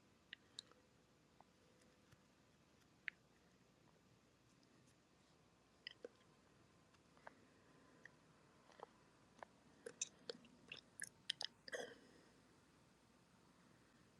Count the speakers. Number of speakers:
zero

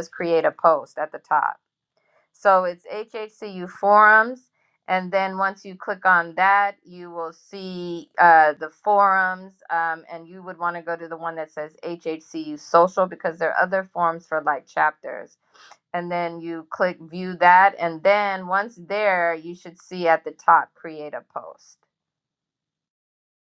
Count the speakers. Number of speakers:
one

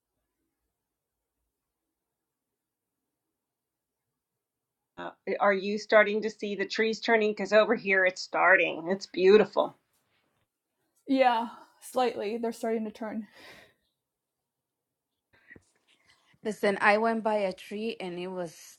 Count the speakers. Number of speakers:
three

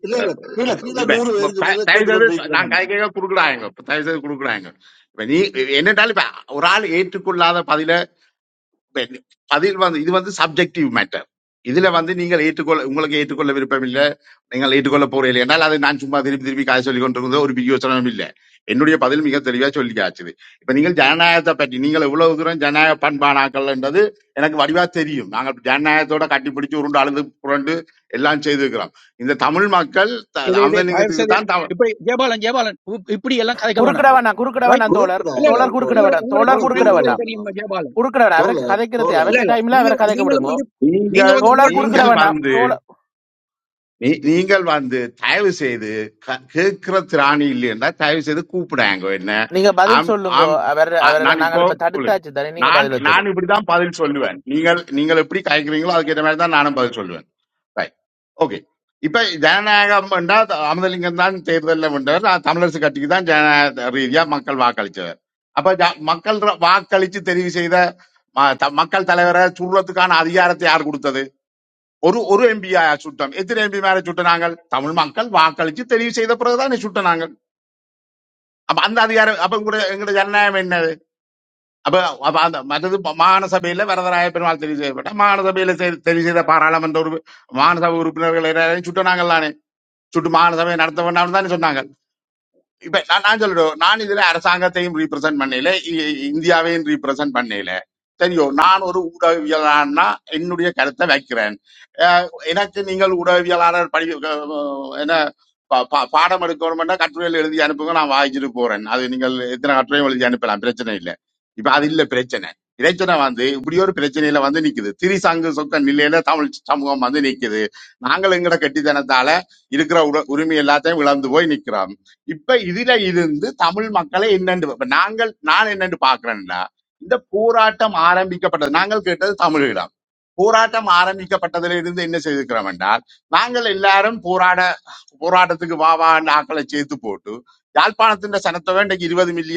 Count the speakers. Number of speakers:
four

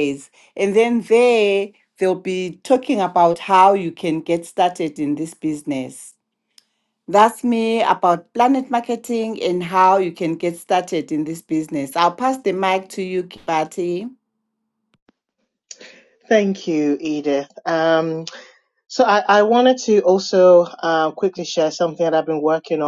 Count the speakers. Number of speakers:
two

